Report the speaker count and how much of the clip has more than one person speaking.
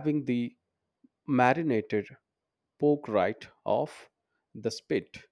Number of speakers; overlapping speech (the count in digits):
1, no overlap